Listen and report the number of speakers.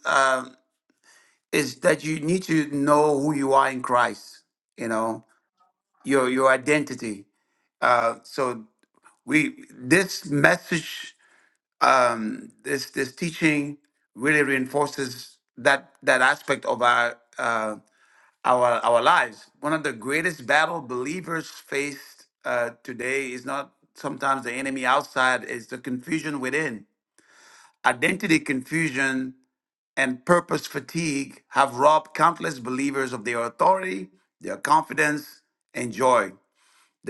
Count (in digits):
1